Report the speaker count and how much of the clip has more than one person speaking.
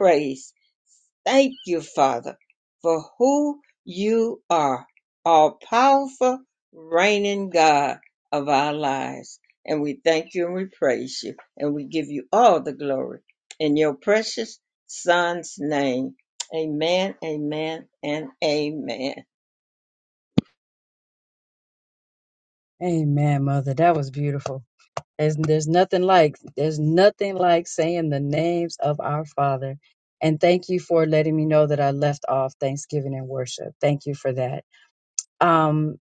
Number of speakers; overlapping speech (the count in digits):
2, no overlap